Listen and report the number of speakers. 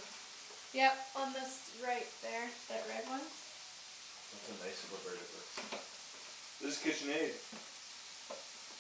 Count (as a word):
two